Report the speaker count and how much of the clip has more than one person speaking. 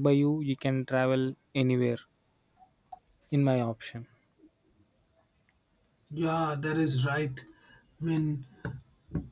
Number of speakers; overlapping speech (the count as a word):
two, no overlap